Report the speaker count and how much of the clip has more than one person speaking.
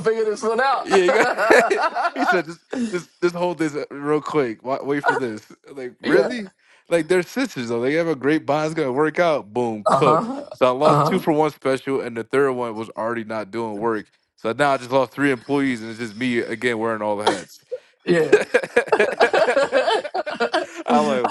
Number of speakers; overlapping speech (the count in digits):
2, about 9%